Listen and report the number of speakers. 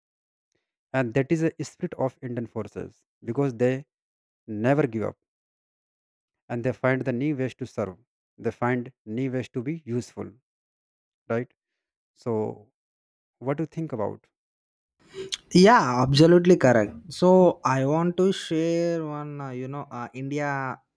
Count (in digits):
2